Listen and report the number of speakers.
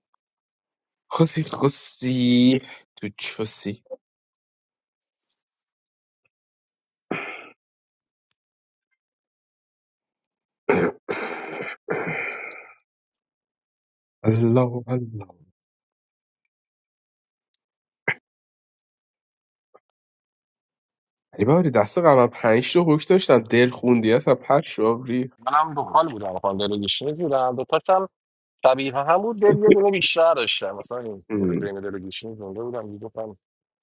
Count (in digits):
2